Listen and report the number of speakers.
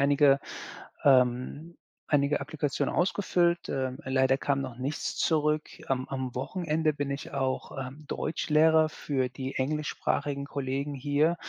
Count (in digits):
1